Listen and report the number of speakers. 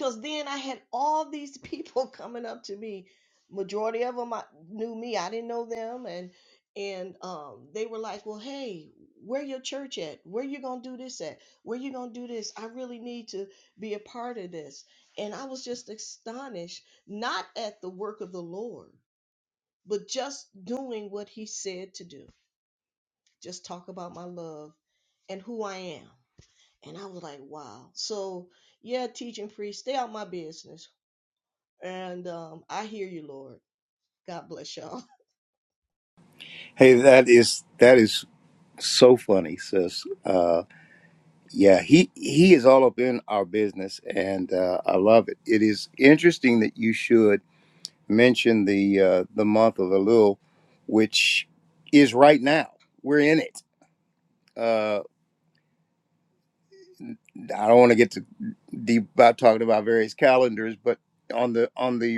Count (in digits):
2